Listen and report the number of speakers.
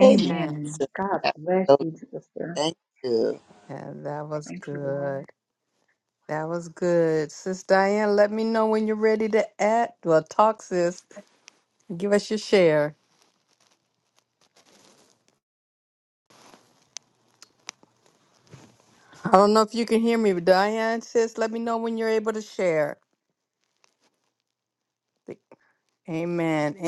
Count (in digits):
3